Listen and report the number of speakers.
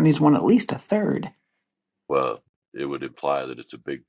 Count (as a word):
two